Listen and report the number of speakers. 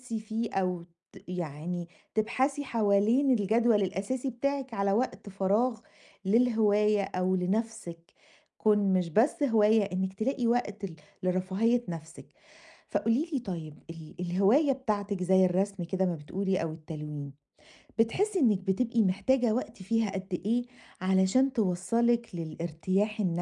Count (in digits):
1